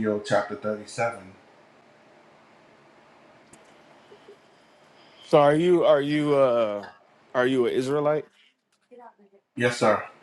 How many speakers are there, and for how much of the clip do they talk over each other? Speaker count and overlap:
two, no overlap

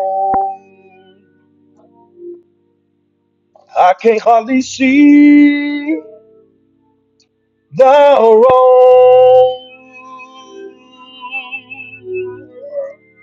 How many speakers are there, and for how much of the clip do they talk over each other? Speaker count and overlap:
one, no overlap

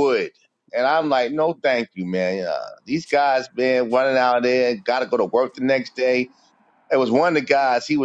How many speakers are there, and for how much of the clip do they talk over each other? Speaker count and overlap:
one, no overlap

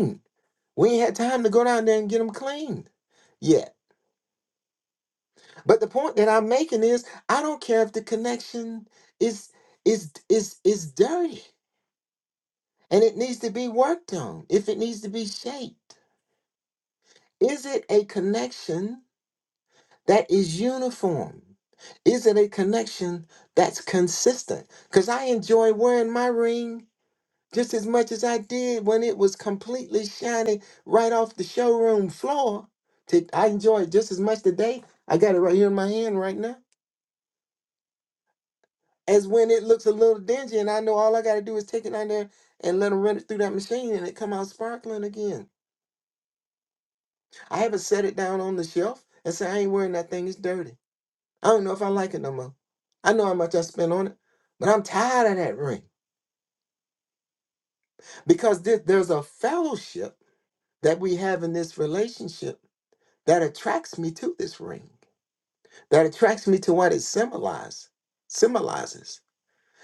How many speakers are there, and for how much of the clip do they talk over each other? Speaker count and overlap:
one, no overlap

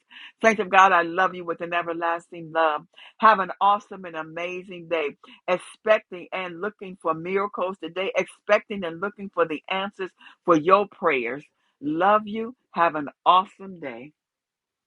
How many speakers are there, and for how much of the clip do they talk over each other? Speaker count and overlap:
one, no overlap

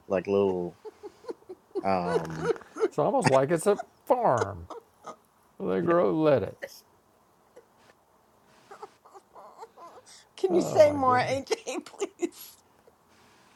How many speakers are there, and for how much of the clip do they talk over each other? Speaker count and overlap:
three, about 7%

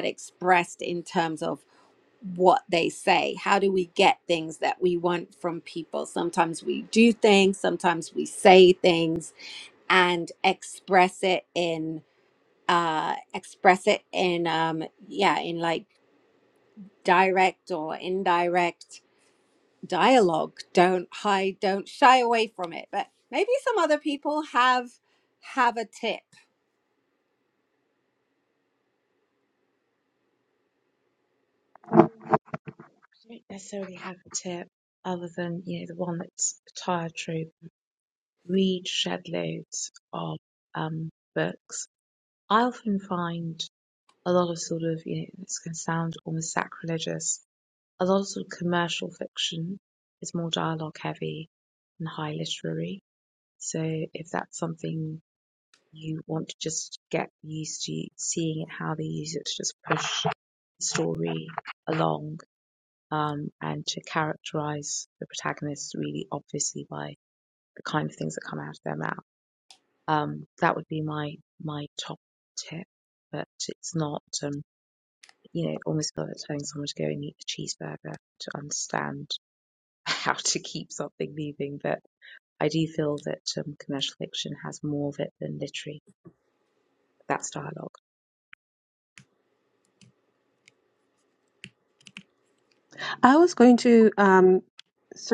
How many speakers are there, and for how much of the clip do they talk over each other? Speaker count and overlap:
three, no overlap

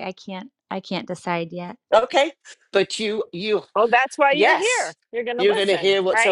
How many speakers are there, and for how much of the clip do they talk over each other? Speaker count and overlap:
three, about 24%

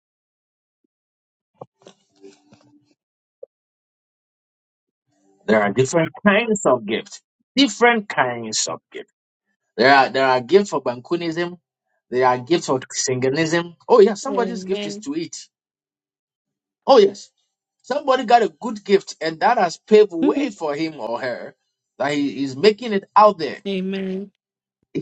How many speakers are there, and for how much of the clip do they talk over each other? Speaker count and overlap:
two, about 3%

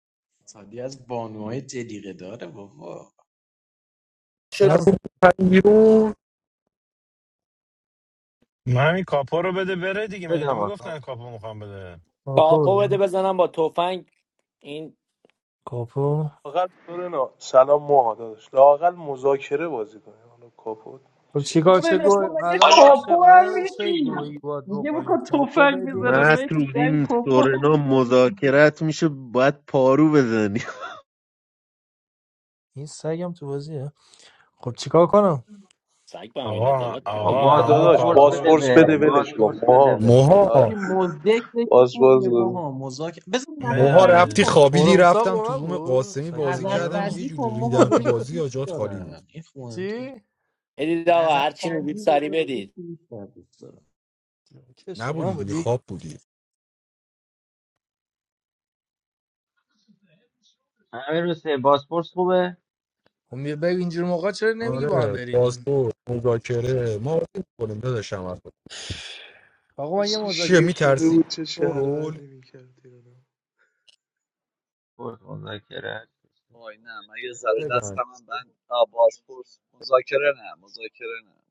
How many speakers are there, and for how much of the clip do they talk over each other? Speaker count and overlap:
nine, about 29%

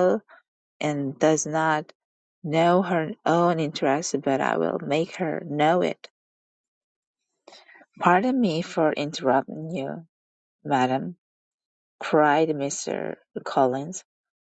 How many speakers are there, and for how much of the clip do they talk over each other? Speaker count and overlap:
one, no overlap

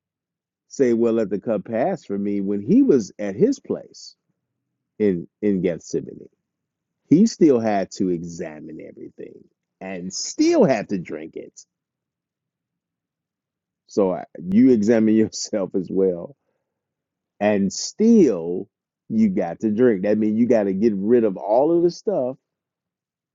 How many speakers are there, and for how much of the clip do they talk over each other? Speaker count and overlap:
one, no overlap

